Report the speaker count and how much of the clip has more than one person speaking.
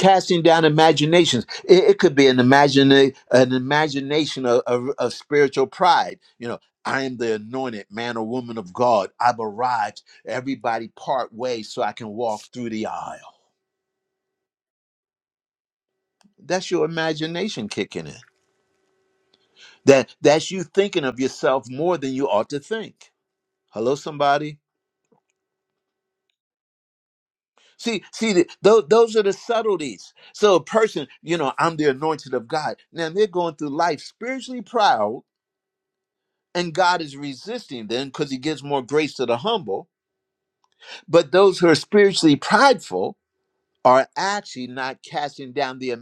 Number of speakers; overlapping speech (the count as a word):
one, no overlap